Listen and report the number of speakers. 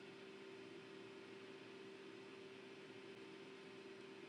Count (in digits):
0